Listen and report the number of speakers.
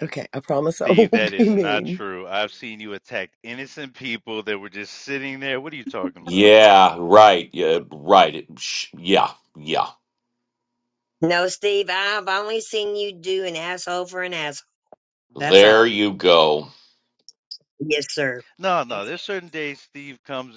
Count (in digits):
4